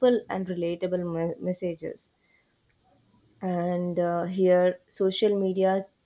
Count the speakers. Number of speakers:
one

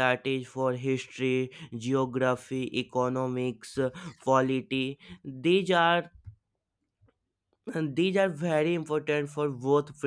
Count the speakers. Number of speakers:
one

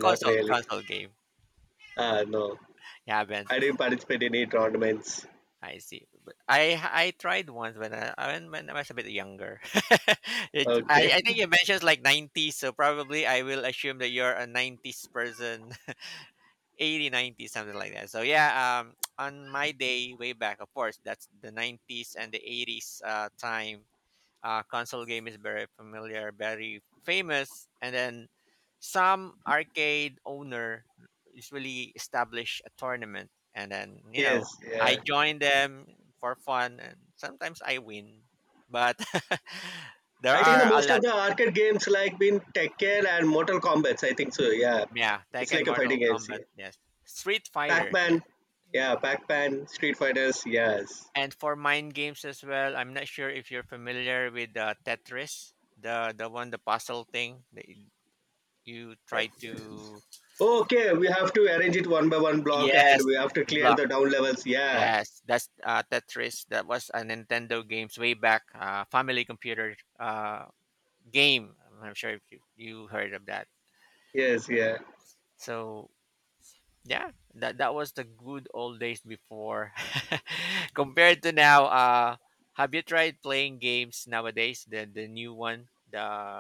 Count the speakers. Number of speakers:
two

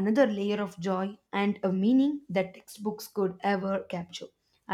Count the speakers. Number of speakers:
one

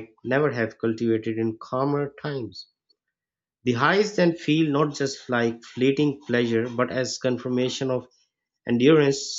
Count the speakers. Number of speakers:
one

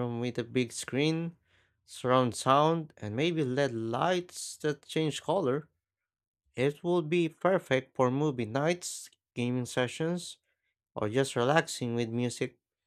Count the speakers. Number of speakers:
one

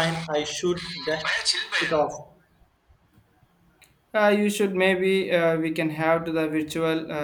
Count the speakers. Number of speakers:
two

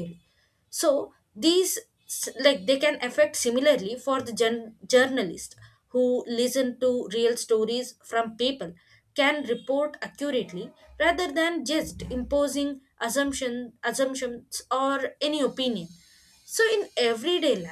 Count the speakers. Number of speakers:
one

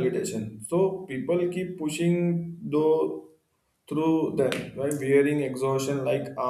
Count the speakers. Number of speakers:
one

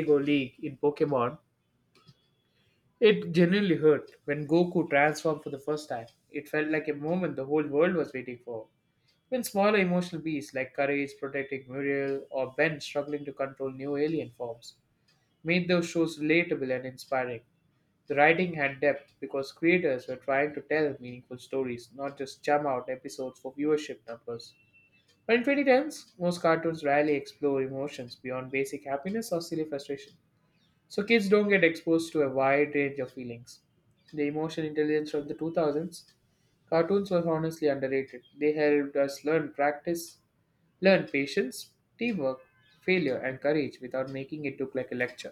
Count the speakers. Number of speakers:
one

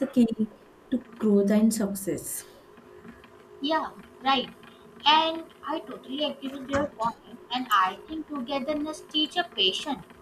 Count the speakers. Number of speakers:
two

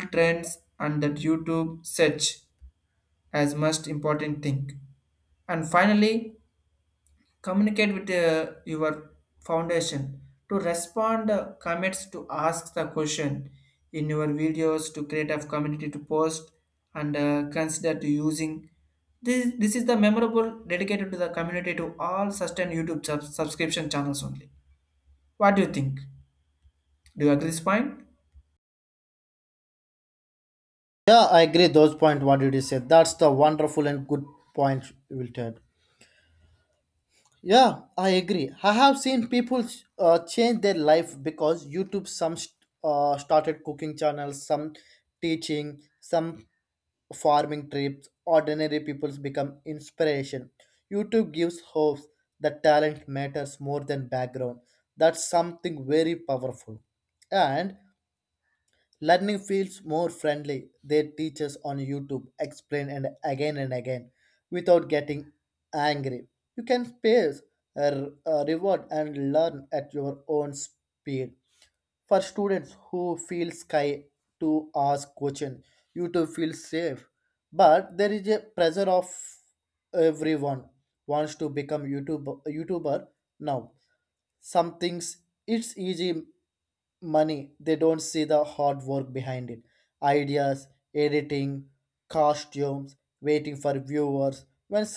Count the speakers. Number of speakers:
two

